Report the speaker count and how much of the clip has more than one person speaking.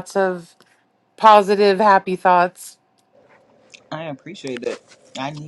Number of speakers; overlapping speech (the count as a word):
two, under 1%